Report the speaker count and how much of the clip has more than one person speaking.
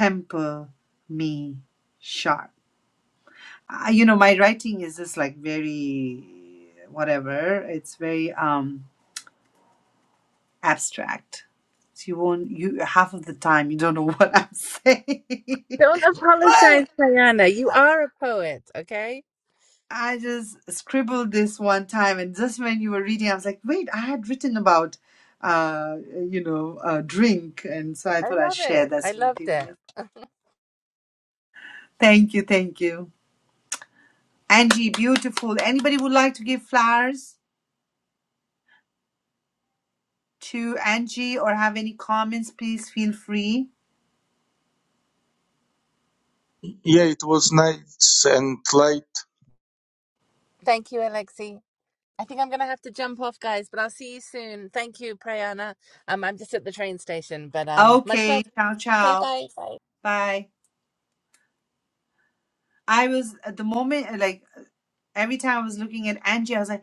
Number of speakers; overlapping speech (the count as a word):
three, about 4%